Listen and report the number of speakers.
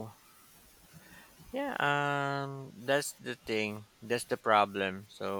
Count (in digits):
1